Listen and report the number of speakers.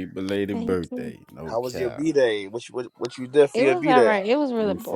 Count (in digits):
3